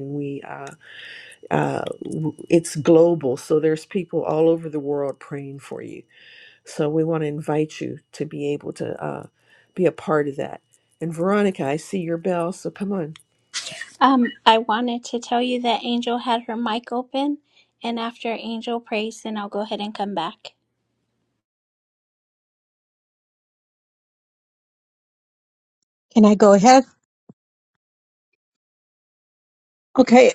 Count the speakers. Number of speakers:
3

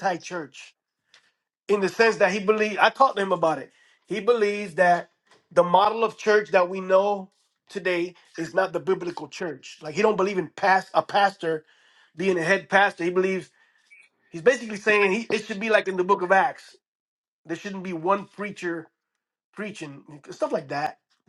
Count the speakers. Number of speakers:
1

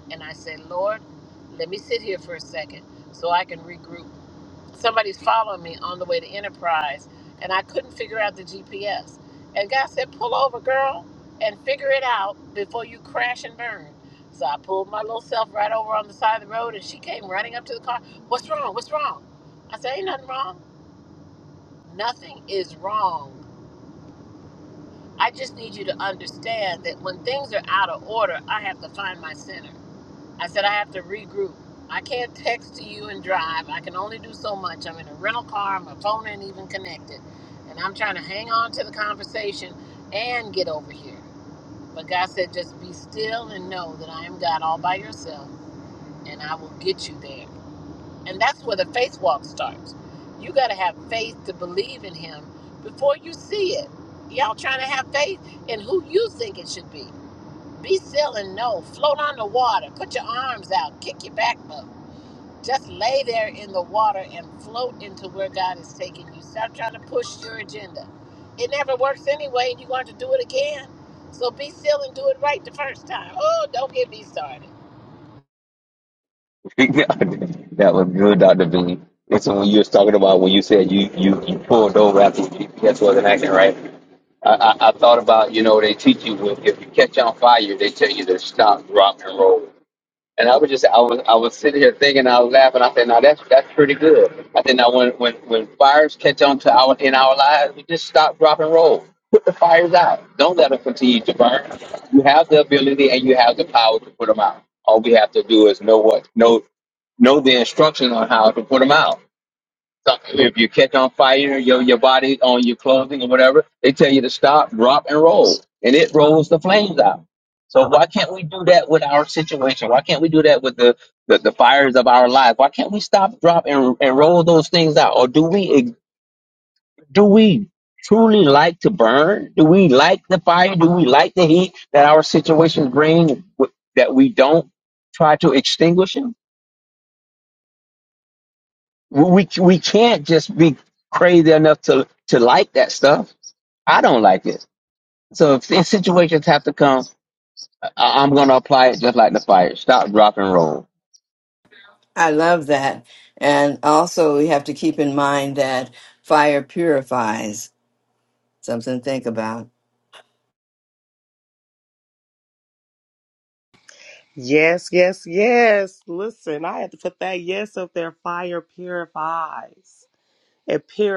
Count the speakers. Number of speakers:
4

